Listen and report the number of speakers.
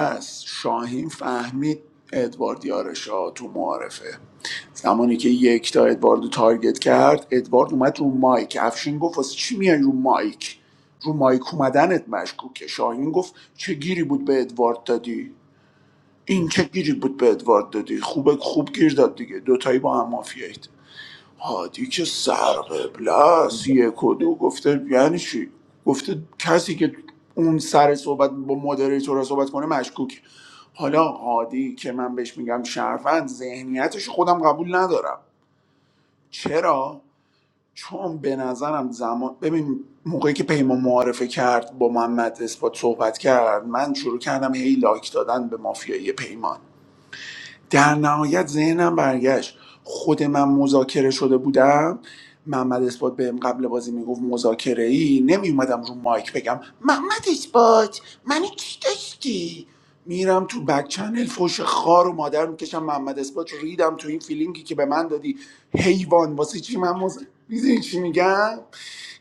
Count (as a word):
one